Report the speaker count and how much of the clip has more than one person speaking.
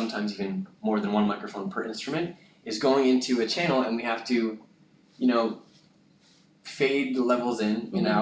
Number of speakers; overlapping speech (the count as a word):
one, no overlap